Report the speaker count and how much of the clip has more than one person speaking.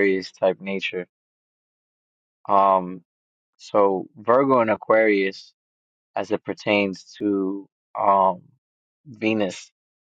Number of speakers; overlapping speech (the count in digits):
1, no overlap